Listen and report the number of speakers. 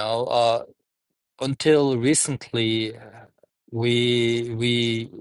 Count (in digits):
1